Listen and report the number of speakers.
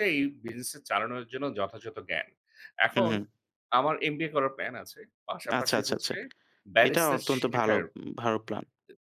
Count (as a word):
two